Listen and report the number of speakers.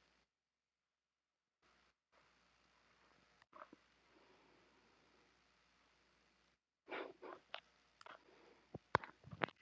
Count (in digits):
0